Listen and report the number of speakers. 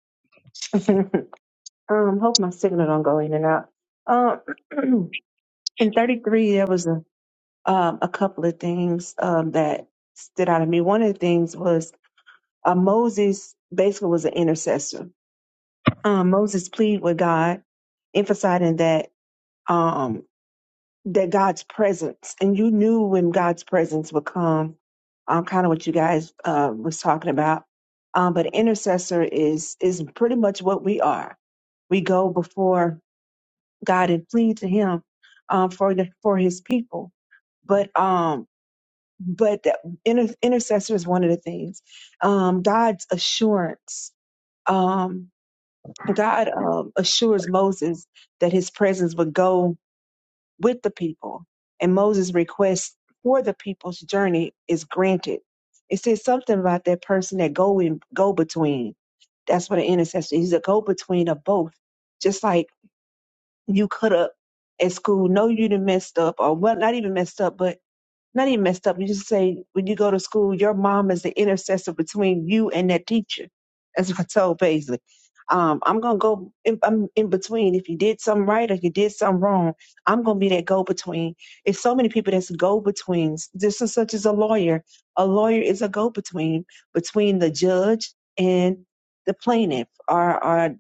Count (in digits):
1